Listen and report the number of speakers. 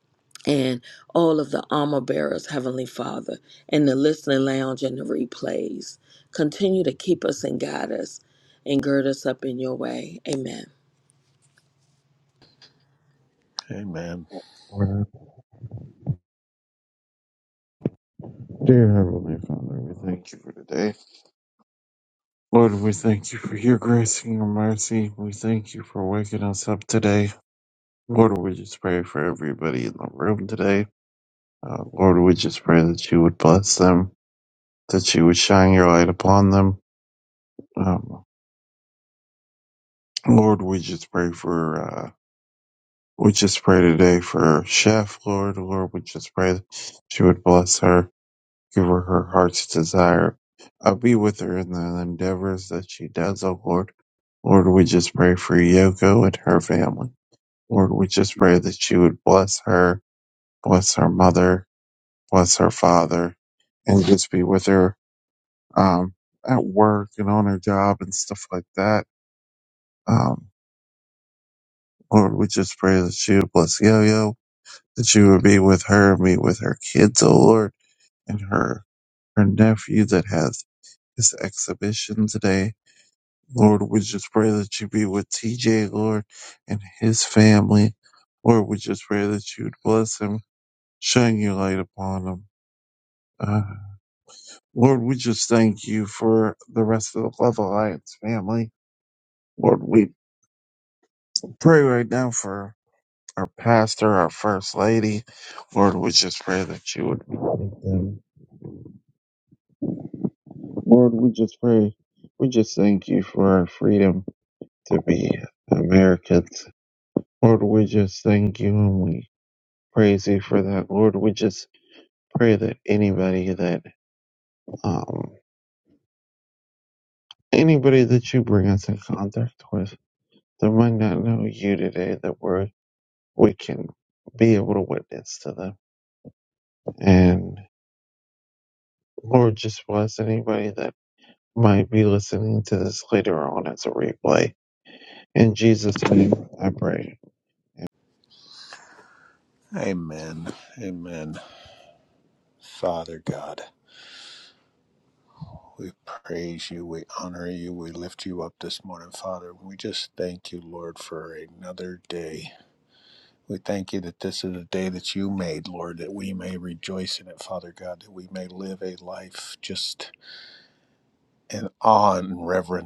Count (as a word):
three